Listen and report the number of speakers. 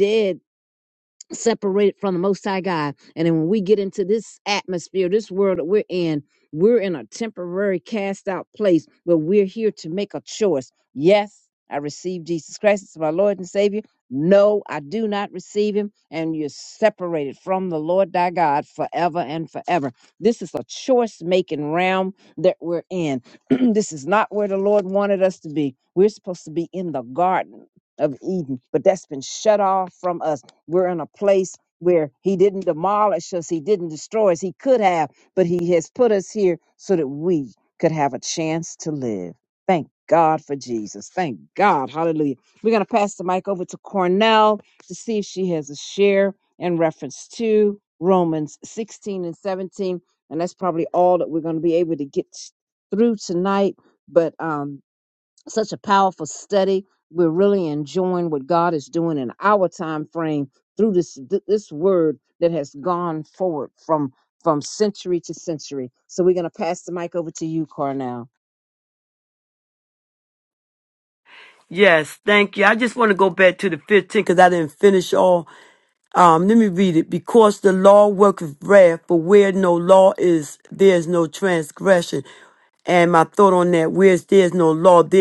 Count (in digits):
2